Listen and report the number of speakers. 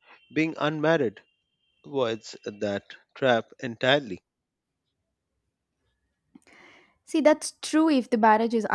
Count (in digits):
2